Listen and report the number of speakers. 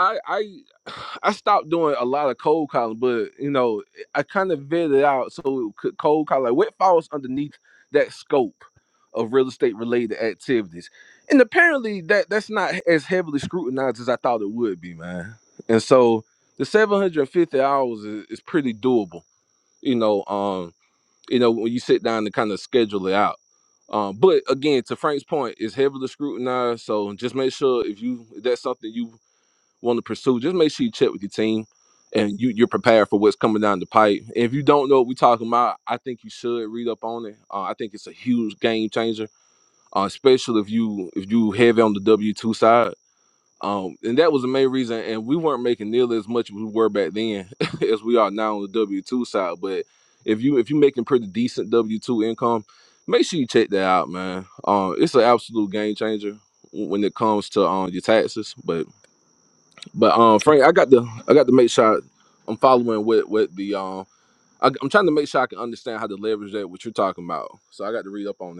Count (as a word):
one